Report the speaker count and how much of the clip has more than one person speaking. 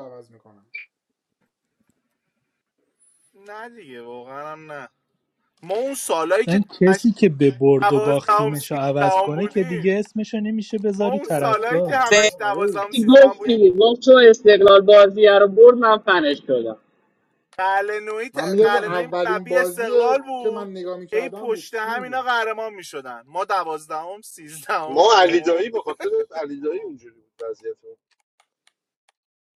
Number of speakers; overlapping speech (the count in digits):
5, about 26%